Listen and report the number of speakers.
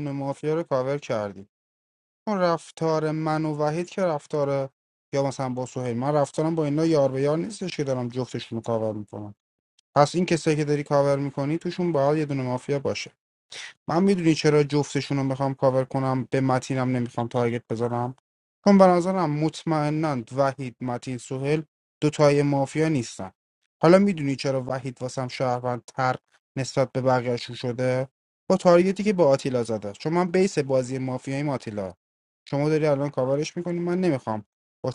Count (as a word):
one